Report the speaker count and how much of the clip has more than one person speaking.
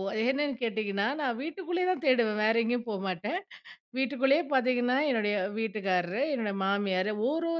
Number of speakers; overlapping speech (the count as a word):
one, no overlap